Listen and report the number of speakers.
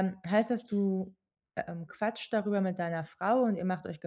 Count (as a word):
one